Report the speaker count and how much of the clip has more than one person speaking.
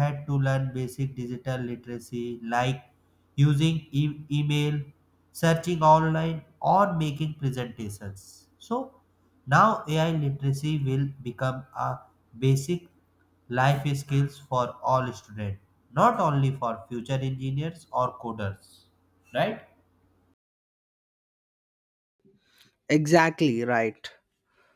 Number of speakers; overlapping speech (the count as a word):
two, no overlap